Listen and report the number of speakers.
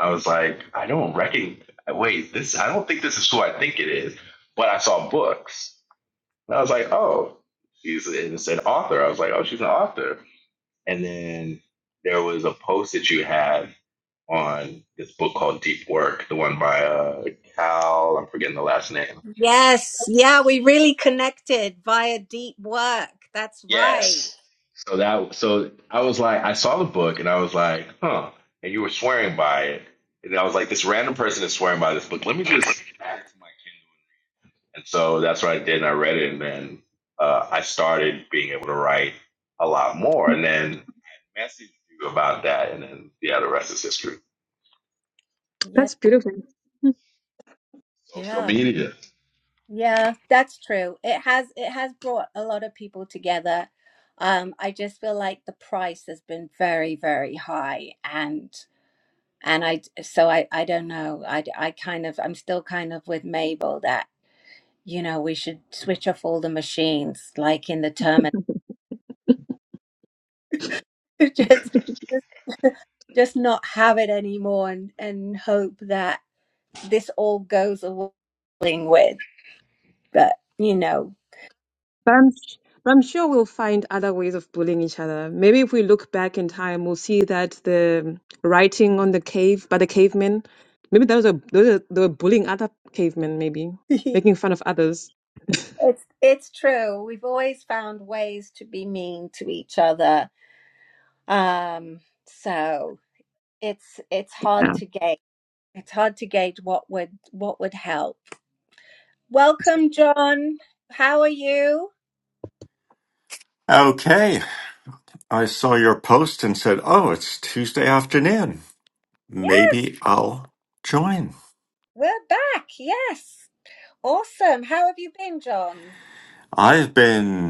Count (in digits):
4